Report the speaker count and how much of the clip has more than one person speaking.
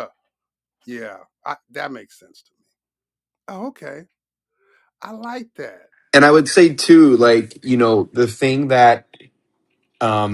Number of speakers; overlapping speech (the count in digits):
2, no overlap